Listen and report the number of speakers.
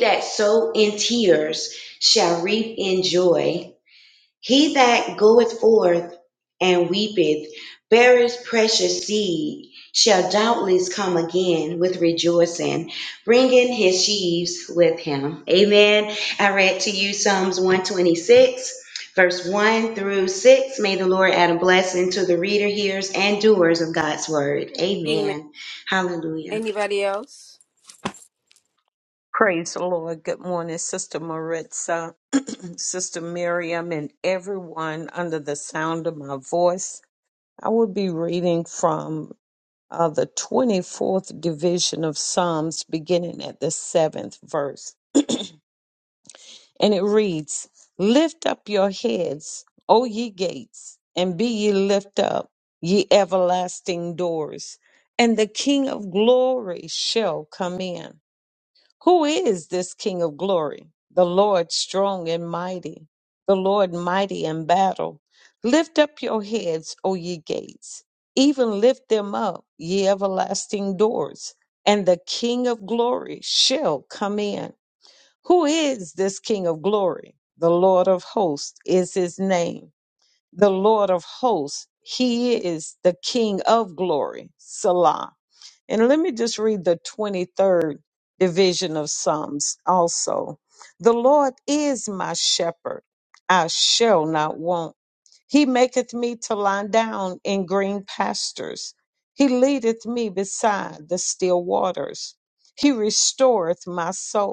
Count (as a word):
three